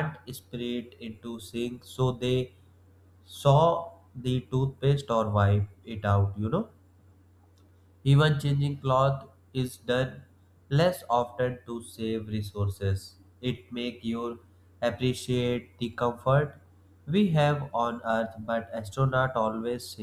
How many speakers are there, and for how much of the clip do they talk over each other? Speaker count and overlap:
1, no overlap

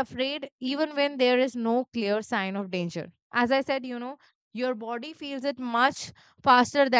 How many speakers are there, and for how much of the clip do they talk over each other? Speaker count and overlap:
1, no overlap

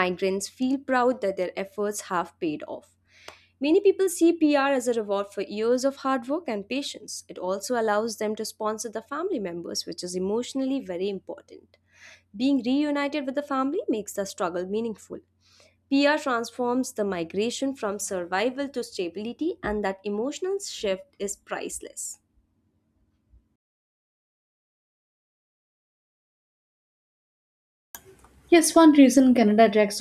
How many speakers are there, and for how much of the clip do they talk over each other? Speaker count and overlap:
2, no overlap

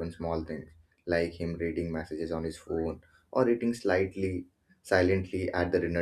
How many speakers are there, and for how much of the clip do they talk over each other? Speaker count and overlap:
1, no overlap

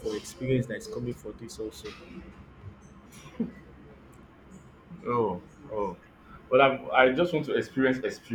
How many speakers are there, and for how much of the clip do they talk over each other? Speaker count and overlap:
2, no overlap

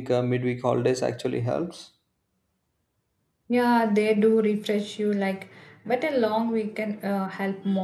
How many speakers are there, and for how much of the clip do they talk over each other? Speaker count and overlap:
2, no overlap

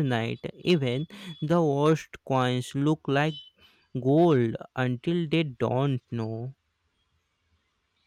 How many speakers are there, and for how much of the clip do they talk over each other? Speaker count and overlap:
1, no overlap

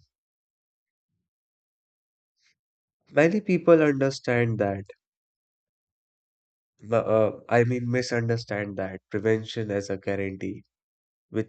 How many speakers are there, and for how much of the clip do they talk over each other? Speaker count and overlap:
1, no overlap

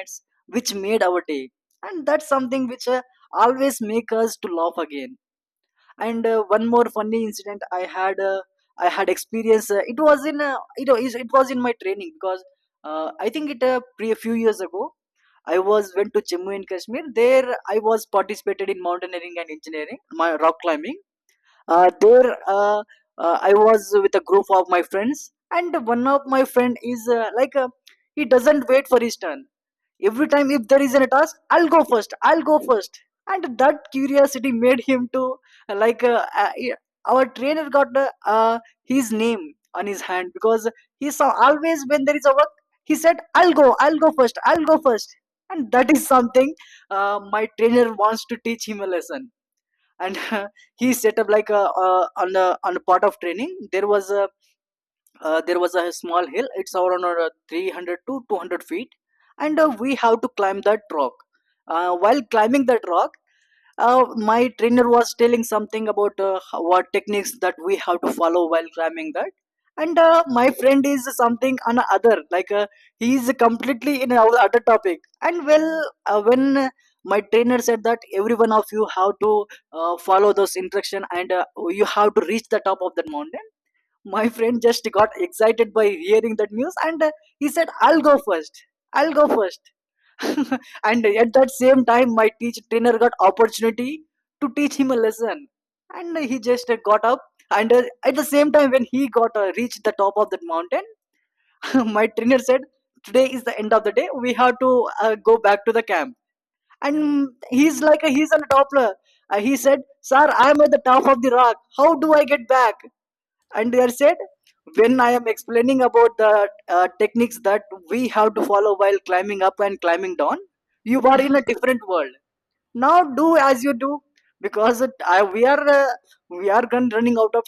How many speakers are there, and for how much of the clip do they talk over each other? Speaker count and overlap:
1, no overlap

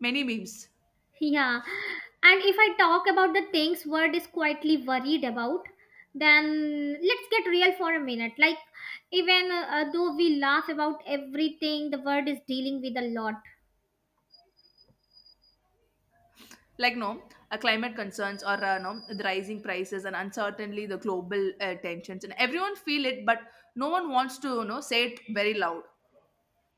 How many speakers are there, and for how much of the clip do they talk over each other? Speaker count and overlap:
2, no overlap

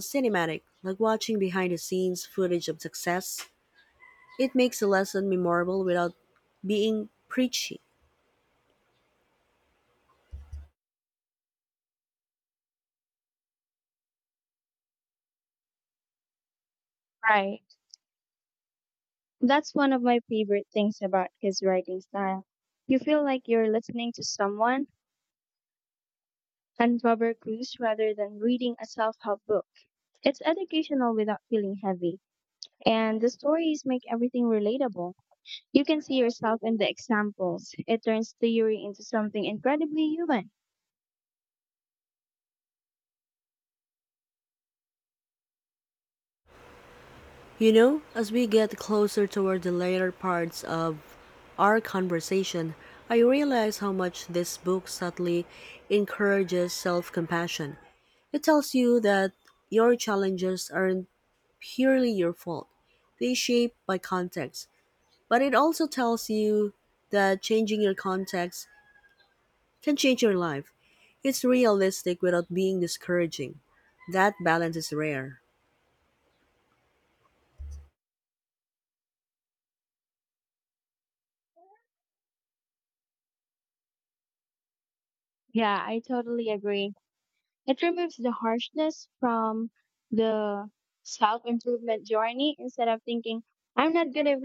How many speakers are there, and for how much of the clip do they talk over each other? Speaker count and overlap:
2, no overlap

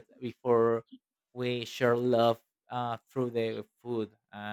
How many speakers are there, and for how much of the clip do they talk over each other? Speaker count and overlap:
1, no overlap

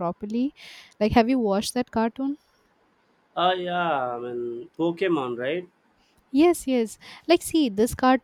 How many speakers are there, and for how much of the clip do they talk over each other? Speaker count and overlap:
2, no overlap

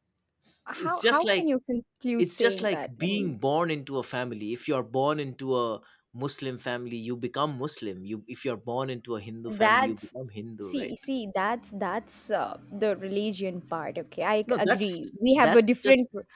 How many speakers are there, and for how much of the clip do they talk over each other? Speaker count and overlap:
2, about 22%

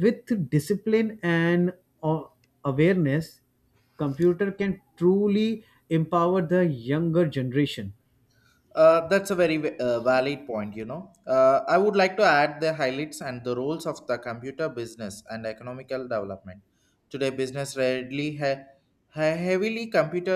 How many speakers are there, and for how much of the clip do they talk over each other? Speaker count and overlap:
2, no overlap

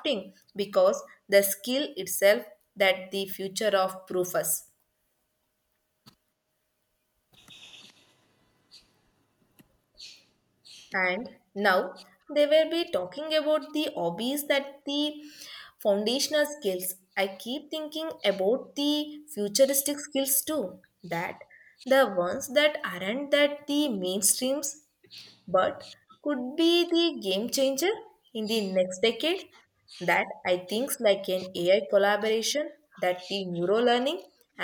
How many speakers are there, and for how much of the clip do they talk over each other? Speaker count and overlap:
1, no overlap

